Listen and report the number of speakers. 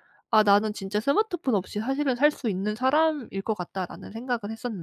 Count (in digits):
1